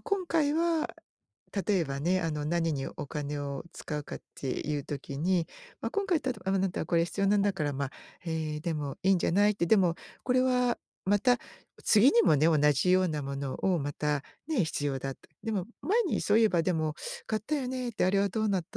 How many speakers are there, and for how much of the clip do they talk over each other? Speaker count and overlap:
1, no overlap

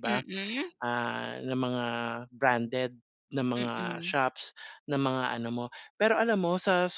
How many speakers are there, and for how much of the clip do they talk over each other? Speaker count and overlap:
2, about 10%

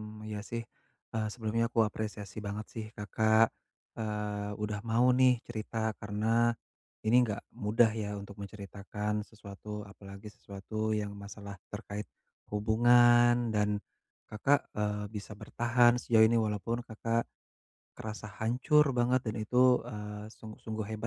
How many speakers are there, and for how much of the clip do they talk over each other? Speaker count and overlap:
1, no overlap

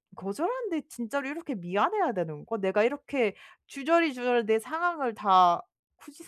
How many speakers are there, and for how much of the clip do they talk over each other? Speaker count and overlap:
1, no overlap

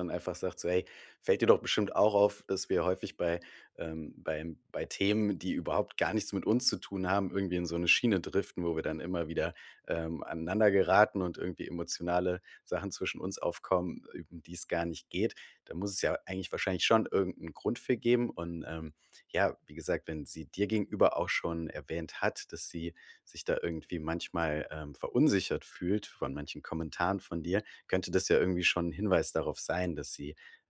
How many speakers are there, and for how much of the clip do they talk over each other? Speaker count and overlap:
1, no overlap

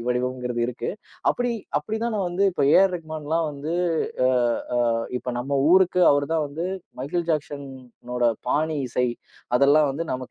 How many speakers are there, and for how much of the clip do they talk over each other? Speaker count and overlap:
1, no overlap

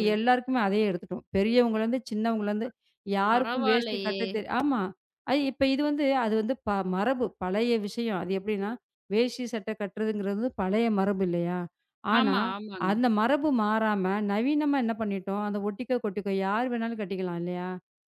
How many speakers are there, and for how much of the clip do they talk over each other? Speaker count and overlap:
2, about 8%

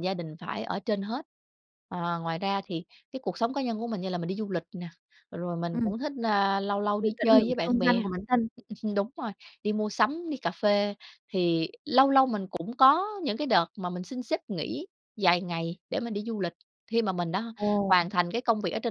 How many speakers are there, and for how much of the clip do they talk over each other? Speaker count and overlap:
2, about 7%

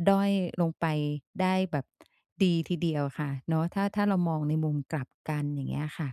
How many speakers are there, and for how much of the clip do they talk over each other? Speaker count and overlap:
1, no overlap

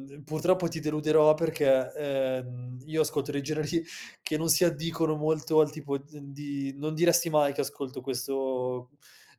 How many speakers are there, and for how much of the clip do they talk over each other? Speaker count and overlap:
1, no overlap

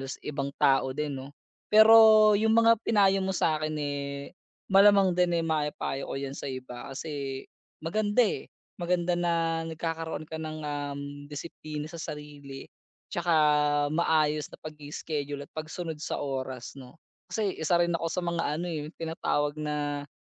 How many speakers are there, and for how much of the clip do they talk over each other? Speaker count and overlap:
1, no overlap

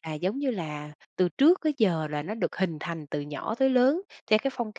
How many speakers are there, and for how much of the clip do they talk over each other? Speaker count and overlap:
1, no overlap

